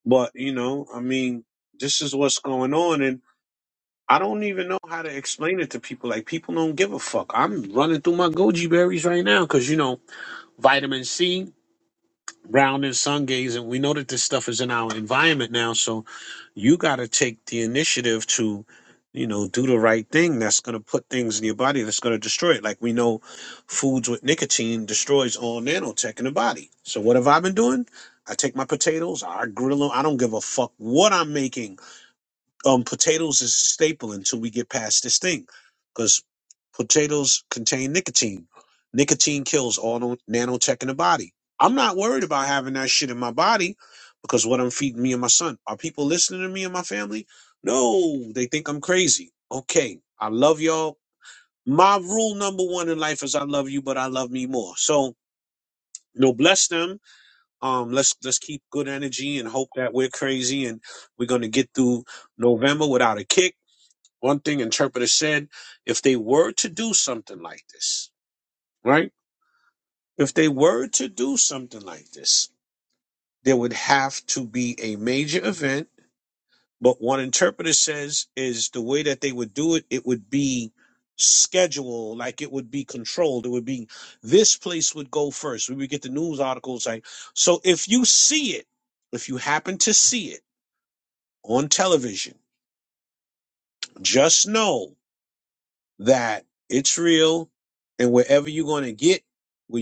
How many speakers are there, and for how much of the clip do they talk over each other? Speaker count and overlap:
1, no overlap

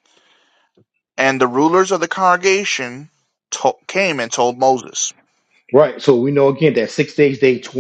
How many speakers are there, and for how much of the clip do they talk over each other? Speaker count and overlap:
2, no overlap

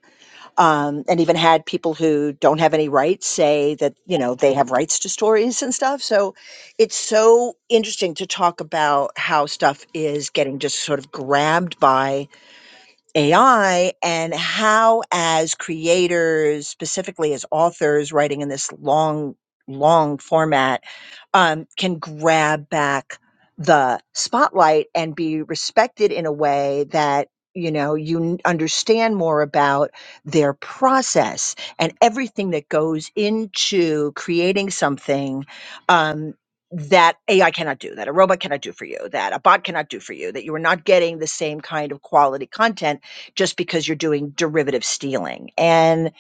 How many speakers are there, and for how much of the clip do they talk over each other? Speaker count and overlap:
1, no overlap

